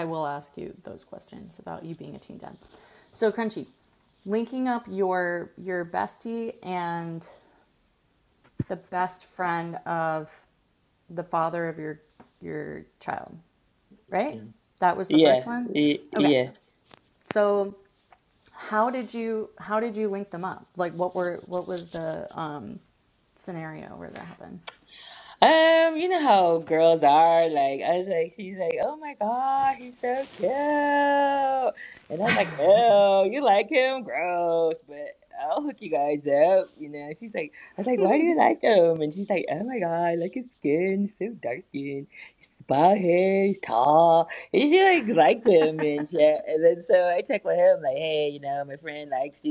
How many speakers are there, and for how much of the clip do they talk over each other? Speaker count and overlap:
2, about 2%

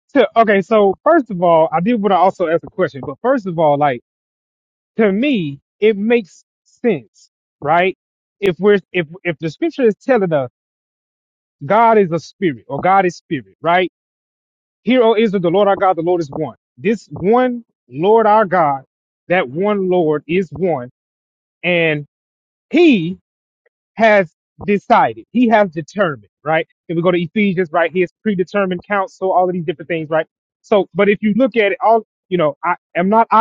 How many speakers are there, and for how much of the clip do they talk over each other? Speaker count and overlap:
1, no overlap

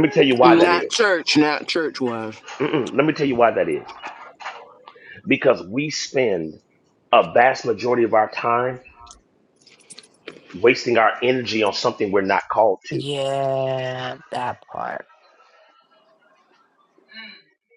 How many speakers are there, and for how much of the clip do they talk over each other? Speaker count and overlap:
3, about 3%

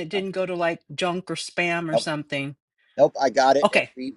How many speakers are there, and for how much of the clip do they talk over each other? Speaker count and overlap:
2, about 12%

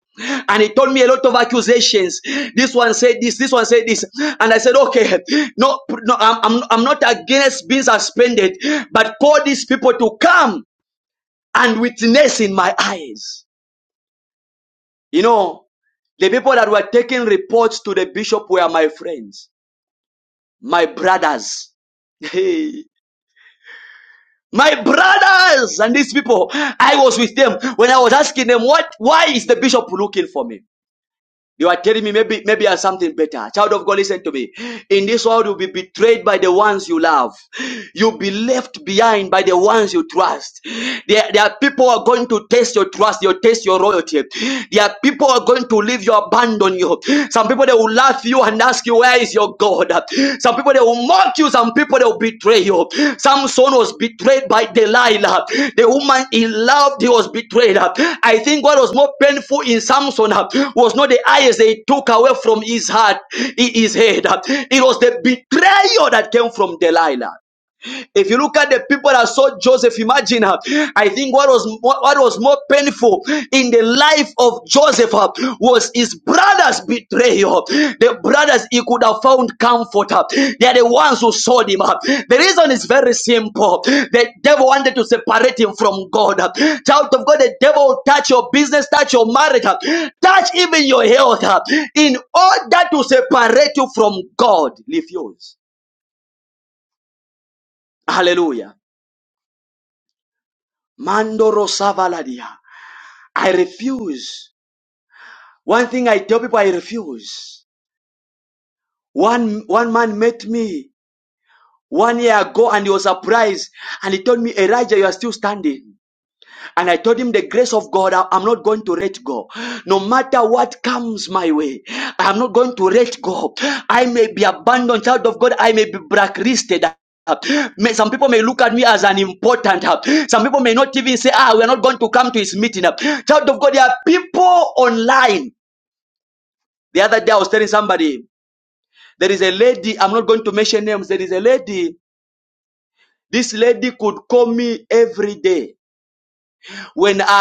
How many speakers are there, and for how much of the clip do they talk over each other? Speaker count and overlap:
1, no overlap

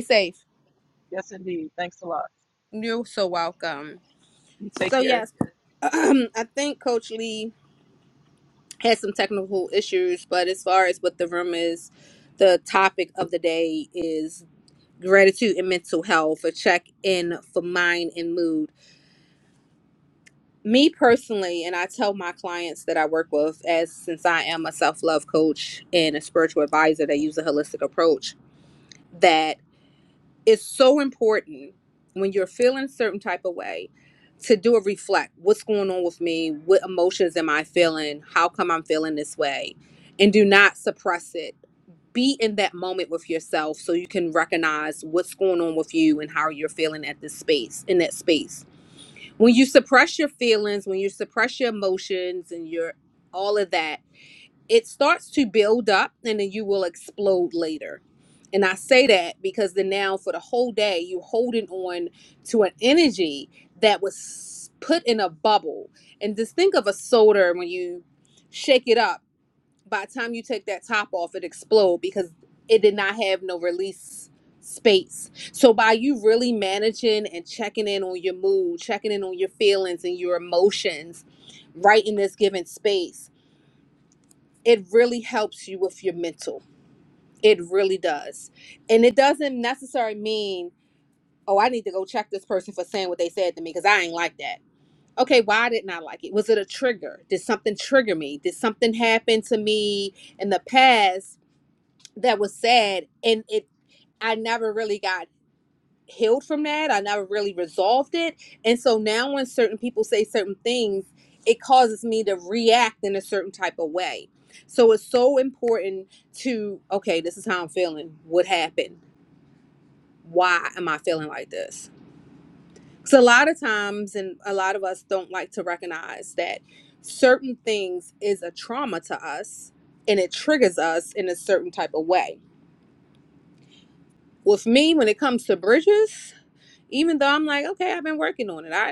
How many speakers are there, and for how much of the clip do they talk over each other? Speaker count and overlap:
2, under 1%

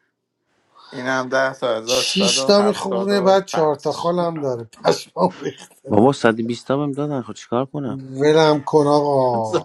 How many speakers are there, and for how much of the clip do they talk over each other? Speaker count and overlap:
3, about 24%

